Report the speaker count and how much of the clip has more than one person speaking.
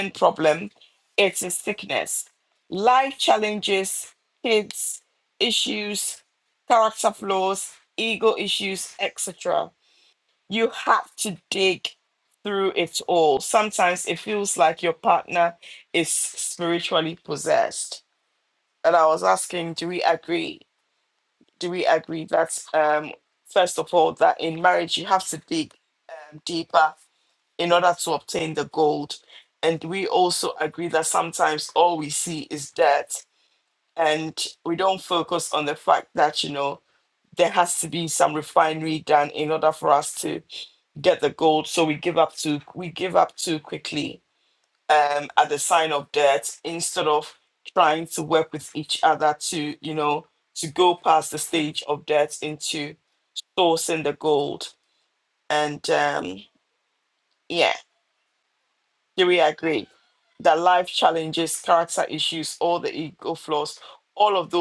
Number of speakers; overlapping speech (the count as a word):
one, no overlap